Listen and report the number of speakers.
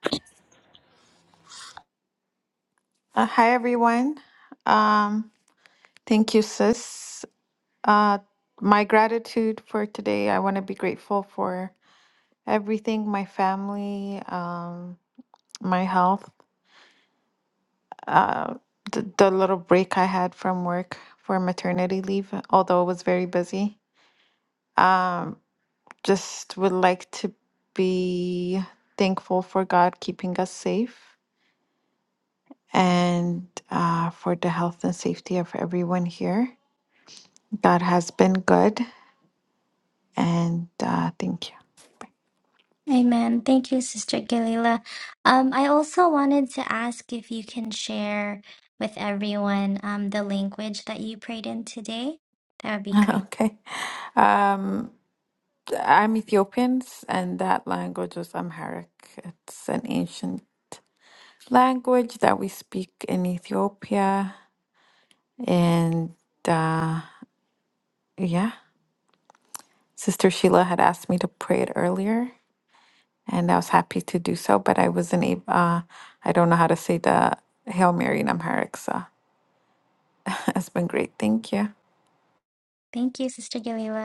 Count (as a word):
two